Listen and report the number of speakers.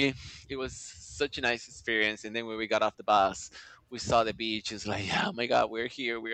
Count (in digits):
1